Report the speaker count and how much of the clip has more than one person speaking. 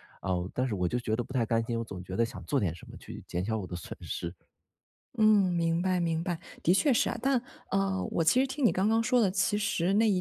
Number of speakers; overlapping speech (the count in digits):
2, no overlap